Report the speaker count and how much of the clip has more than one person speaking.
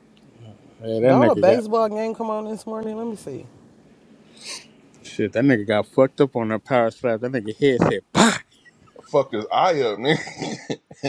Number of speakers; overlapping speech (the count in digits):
3, about 5%